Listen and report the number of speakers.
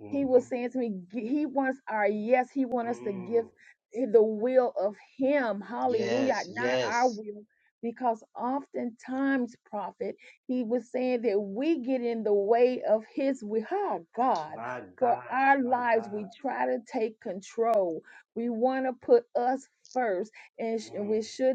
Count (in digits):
2